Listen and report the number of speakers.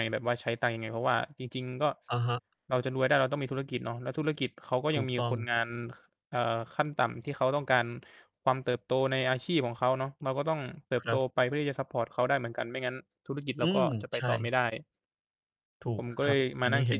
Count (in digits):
2